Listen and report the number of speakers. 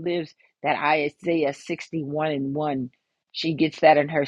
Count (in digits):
1